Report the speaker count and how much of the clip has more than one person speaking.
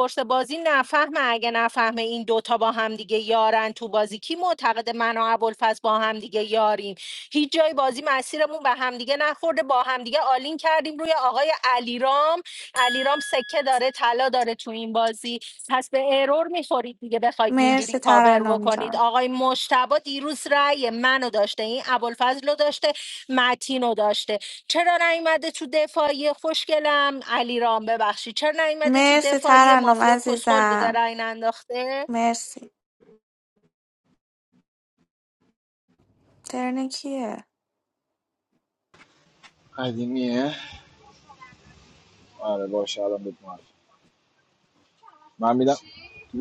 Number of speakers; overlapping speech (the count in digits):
3, about 8%